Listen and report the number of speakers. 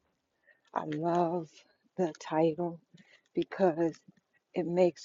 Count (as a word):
one